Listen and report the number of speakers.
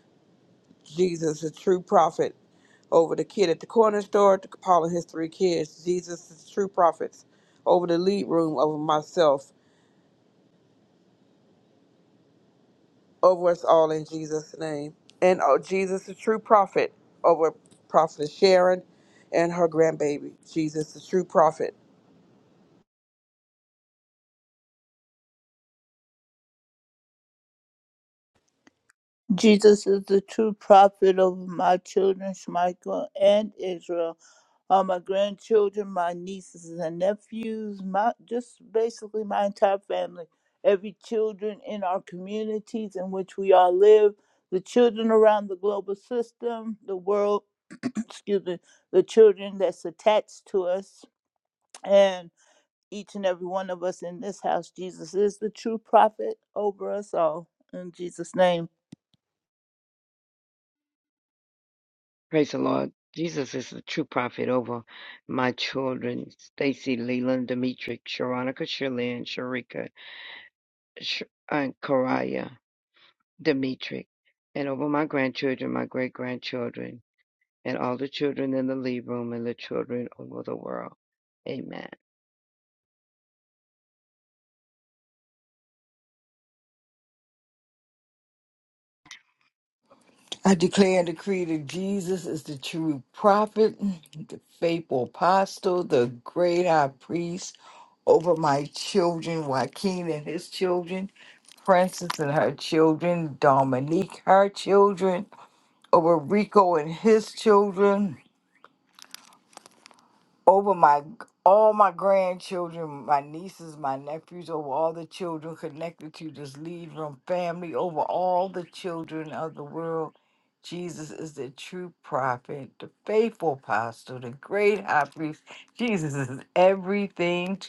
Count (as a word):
four